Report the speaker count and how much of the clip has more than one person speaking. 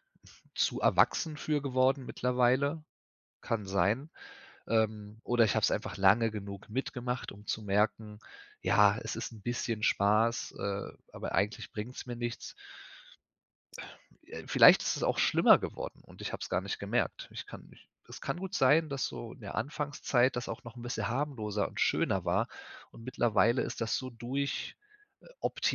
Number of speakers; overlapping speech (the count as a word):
one, no overlap